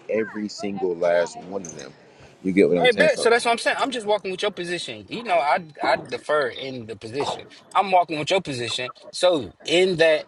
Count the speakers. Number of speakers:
2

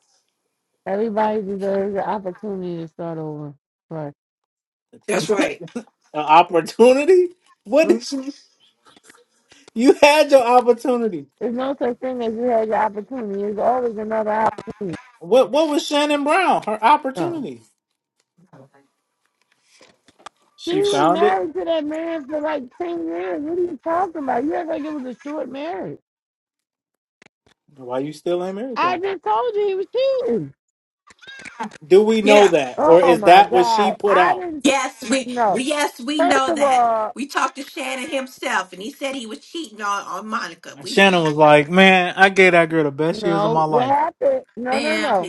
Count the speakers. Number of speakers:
3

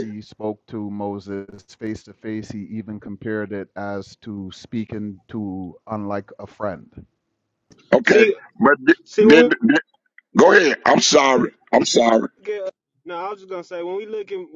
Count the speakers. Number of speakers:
3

